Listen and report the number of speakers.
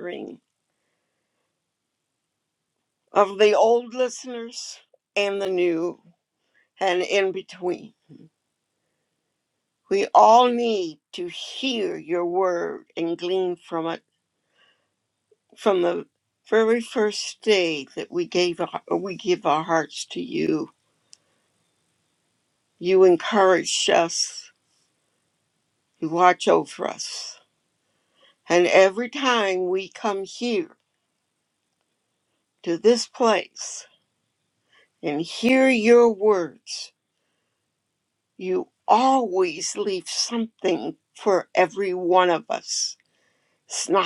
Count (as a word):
one